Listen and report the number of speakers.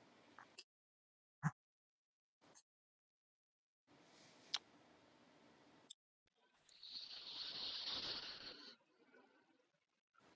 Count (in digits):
0